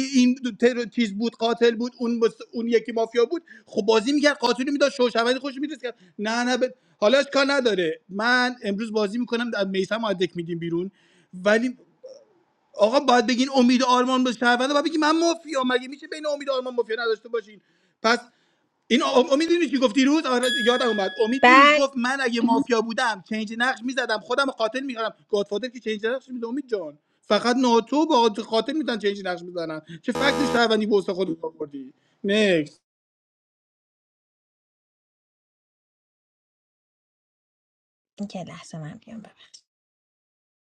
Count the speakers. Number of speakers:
two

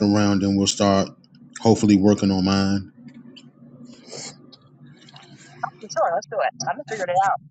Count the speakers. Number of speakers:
two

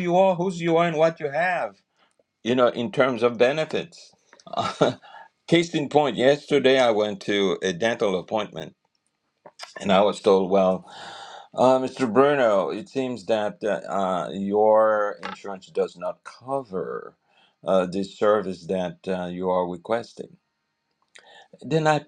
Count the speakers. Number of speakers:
one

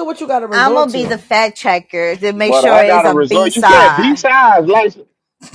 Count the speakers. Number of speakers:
three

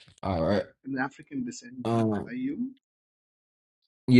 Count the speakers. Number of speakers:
two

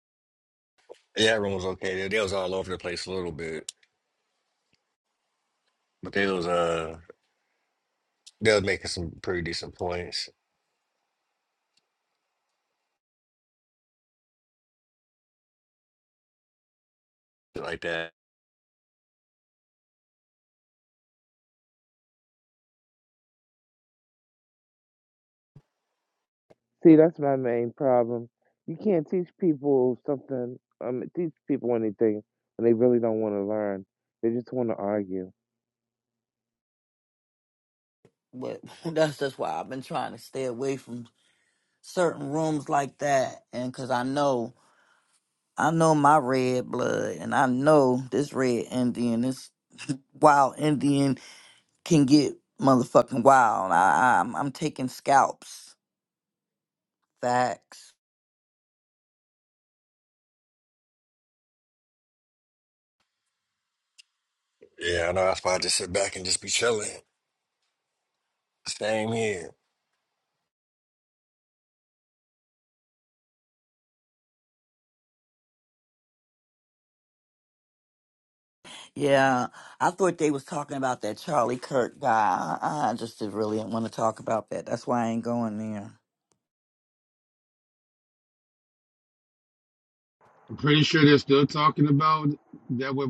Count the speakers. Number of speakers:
four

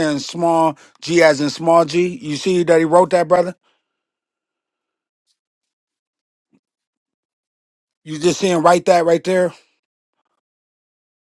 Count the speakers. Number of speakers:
one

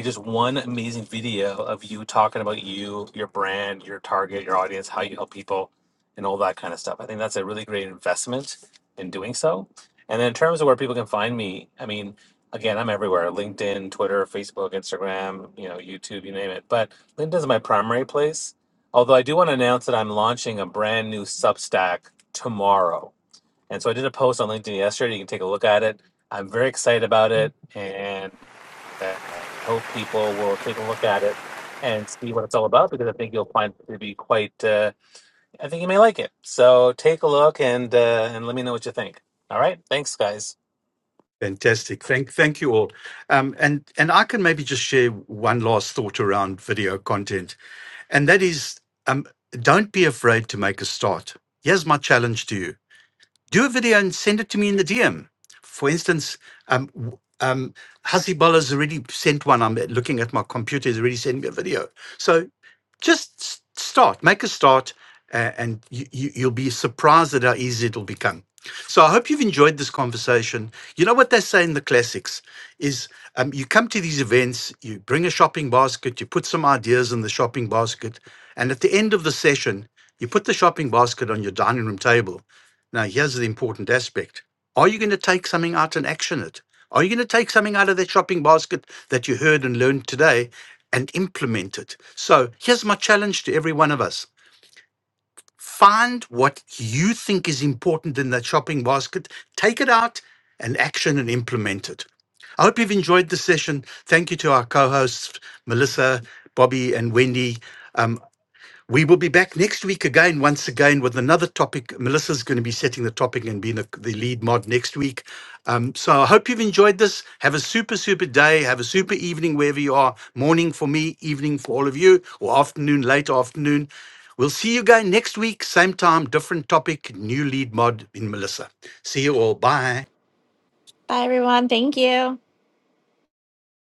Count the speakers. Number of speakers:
three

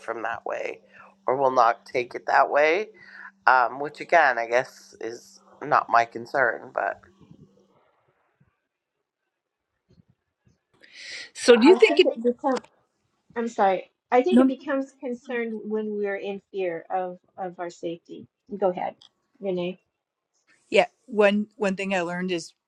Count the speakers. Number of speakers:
three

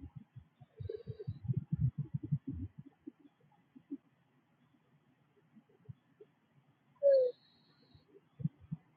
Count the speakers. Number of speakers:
zero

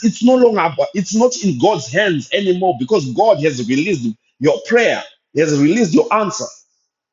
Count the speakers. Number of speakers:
one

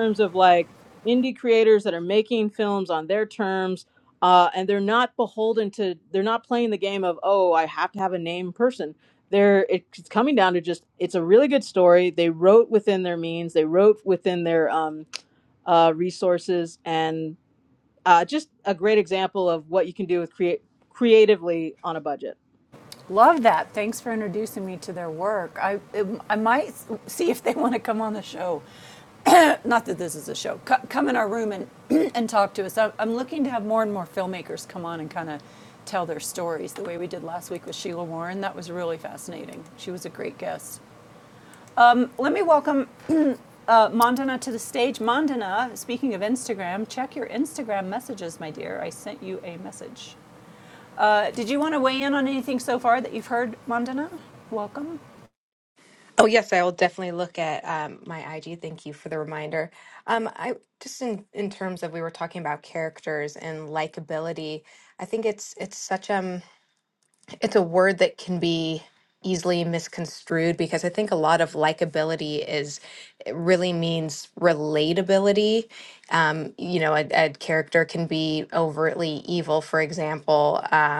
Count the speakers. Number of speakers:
three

